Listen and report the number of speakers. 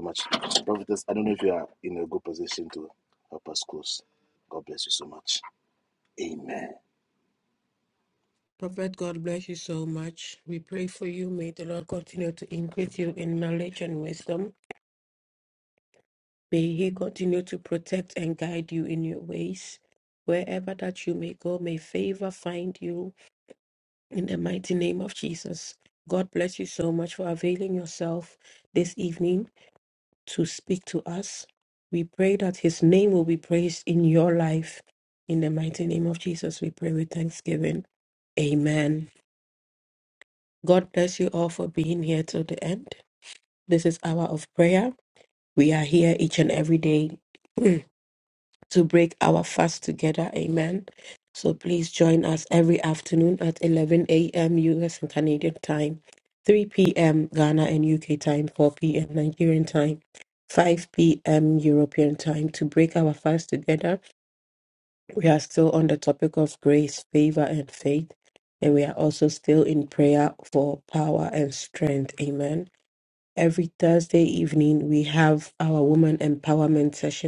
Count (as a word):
two